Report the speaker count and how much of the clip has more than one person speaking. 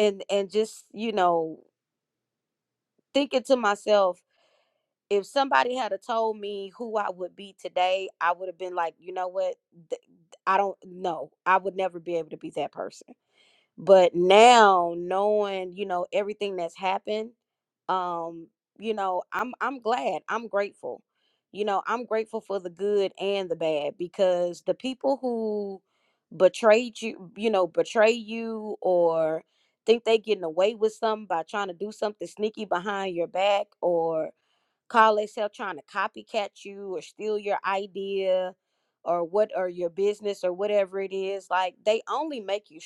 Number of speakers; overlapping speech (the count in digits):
1, no overlap